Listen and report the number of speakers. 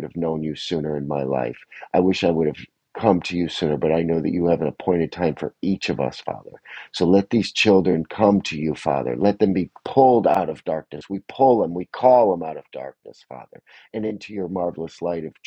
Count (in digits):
1